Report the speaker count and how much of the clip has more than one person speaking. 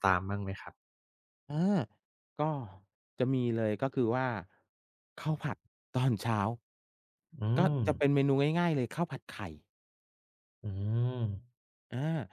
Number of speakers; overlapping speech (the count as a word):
two, about 3%